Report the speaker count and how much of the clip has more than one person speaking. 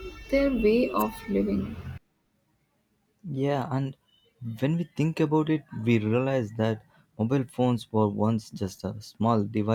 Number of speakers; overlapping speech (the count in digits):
2, no overlap